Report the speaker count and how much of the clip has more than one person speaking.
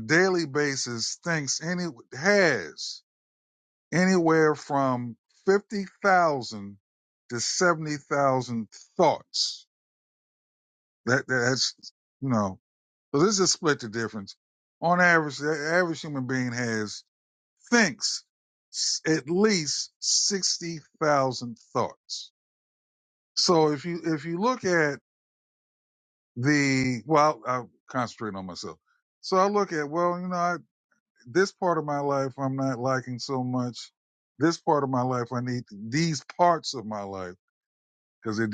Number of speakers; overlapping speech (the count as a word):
one, no overlap